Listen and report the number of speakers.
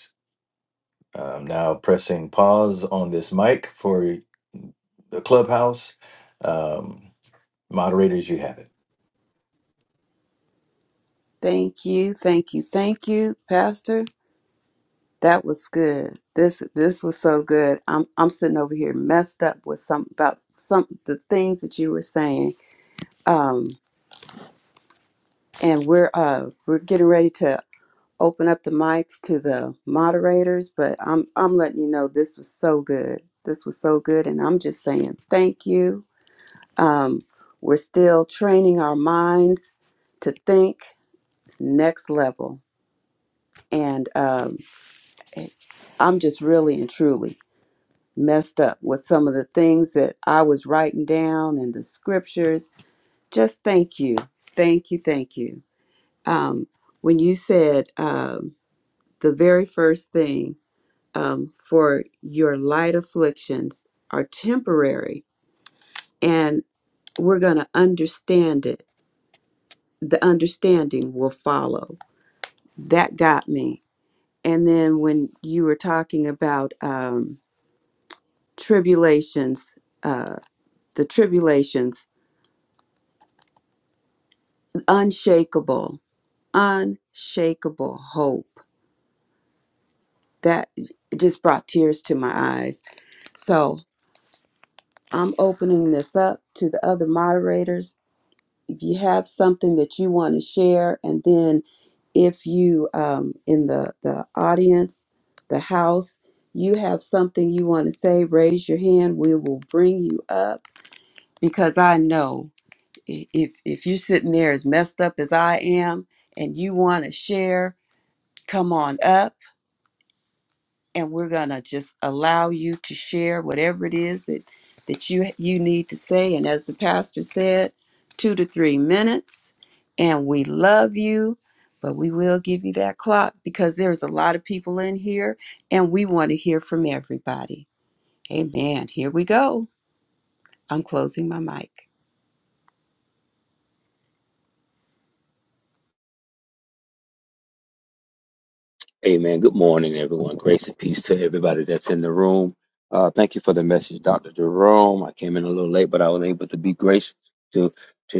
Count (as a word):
three